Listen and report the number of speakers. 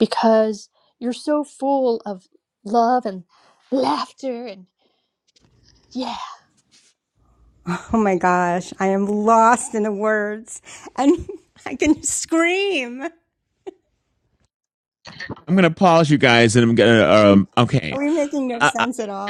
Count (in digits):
3